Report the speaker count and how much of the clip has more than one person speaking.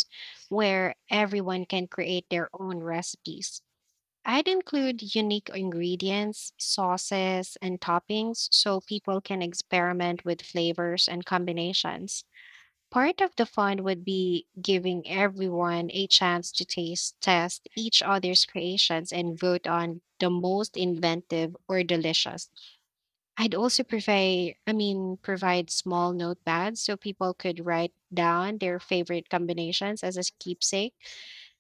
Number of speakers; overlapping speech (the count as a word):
one, no overlap